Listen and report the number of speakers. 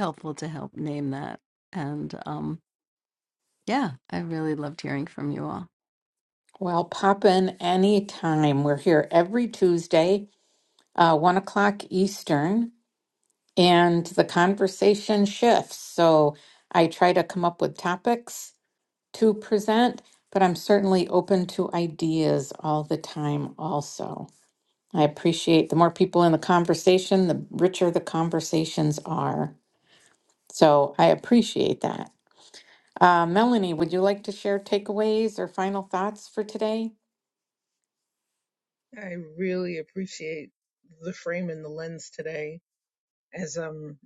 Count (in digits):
3